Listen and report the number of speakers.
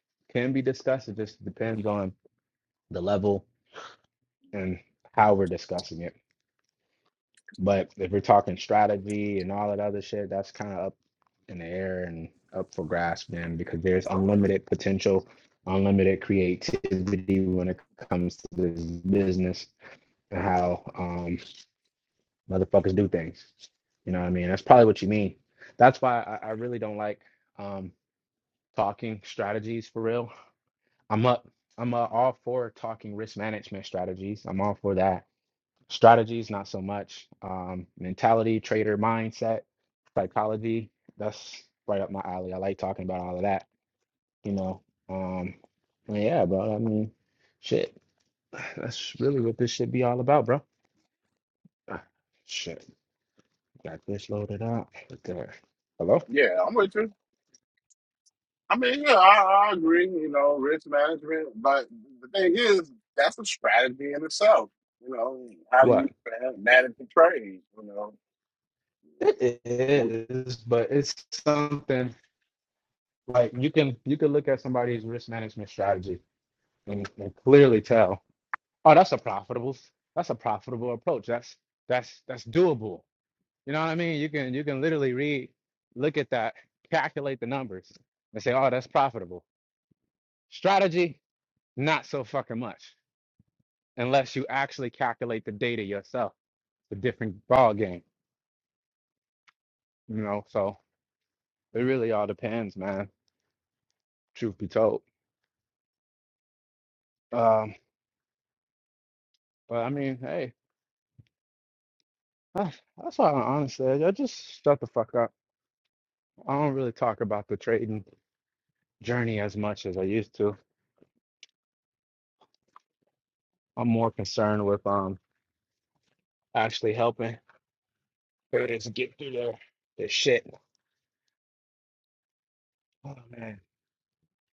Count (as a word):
two